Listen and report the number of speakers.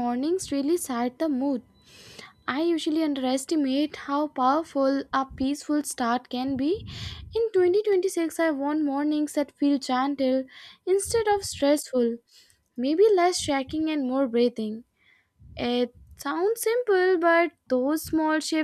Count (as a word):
one